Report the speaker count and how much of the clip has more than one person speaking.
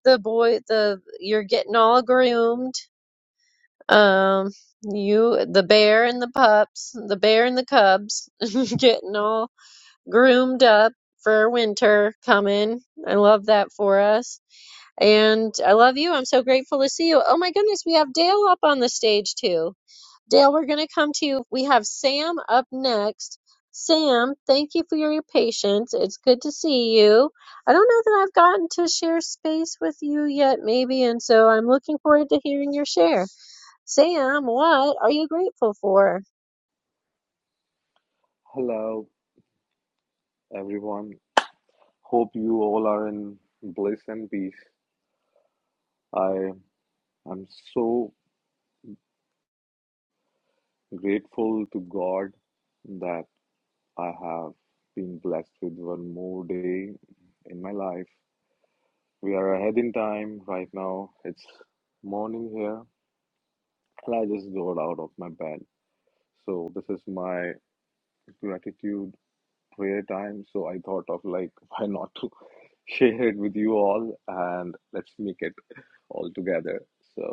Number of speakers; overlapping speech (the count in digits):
2, no overlap